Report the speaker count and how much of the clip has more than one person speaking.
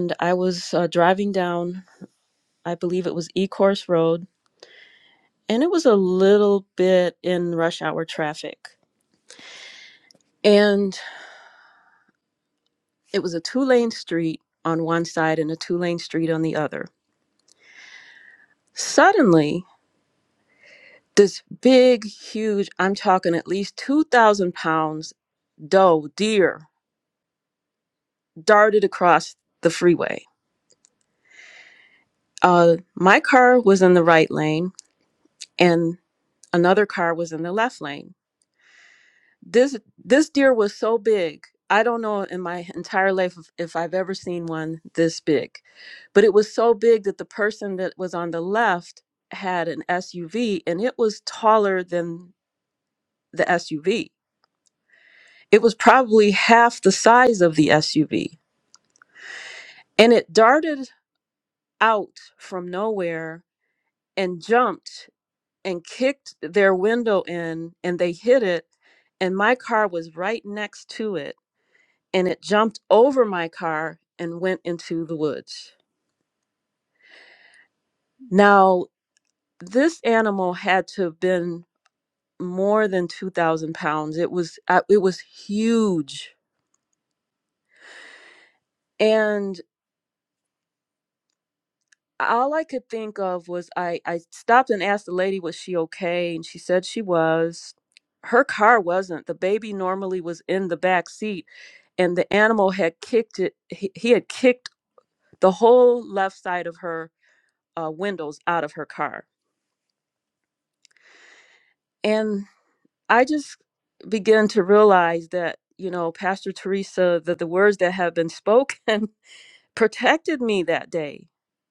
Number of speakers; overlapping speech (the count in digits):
1, no overlap